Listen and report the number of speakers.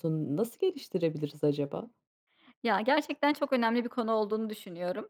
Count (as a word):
two